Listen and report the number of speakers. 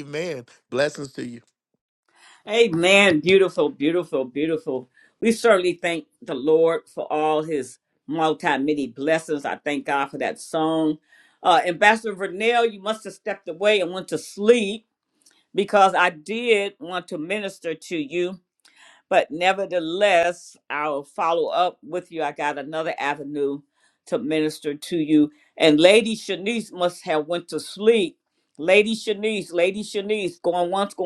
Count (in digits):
2